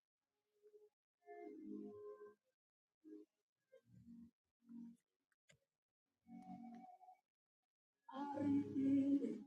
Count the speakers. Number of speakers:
zero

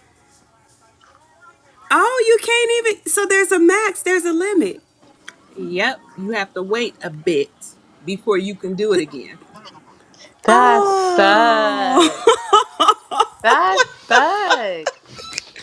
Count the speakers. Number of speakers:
three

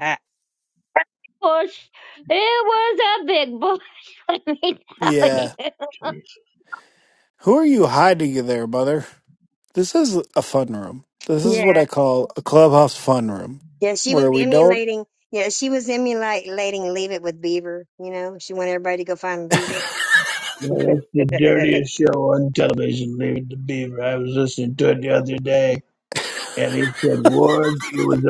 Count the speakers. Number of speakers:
four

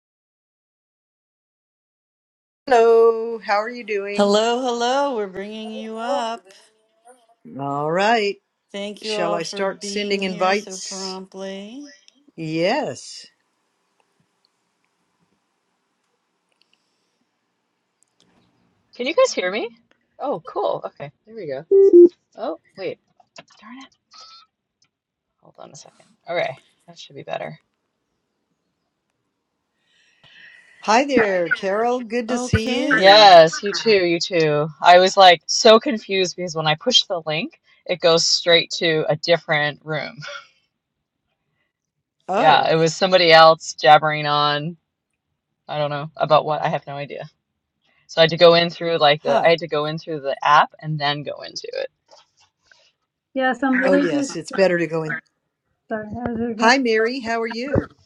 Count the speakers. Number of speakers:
four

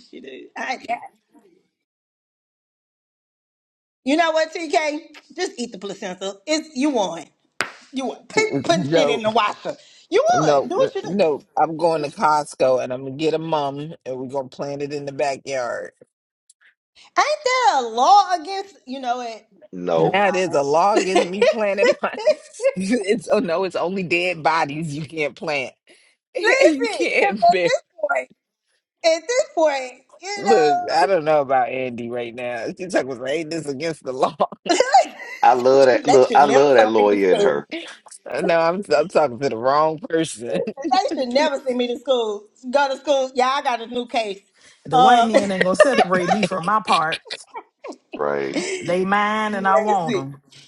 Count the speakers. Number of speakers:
four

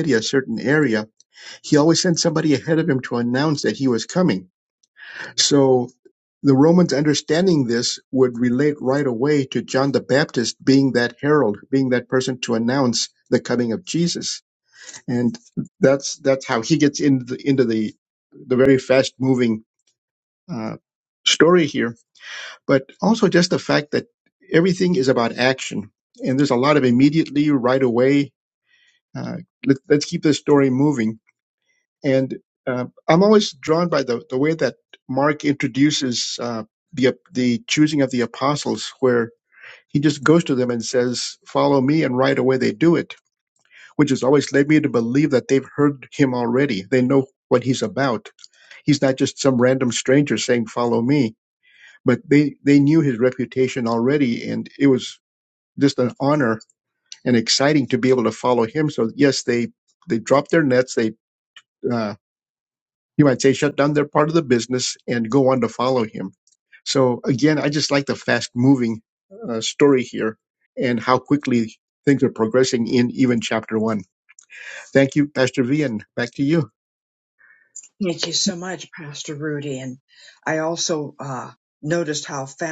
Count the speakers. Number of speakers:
two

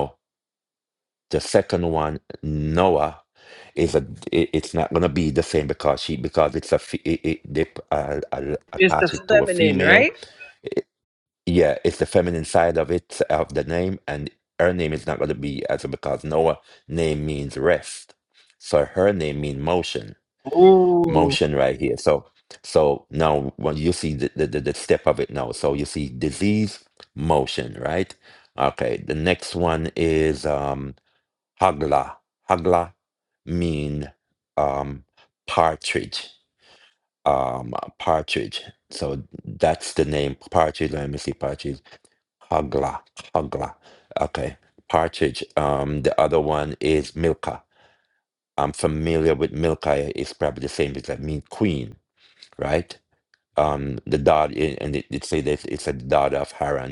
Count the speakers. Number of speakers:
two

